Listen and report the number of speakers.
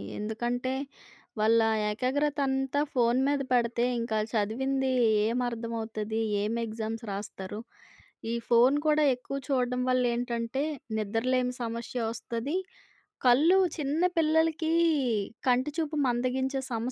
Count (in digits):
1